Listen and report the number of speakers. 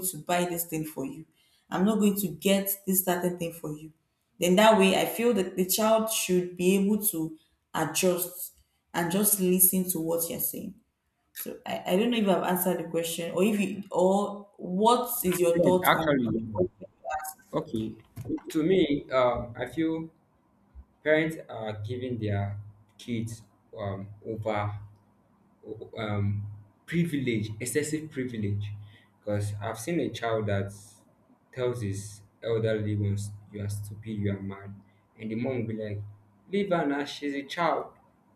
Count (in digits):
2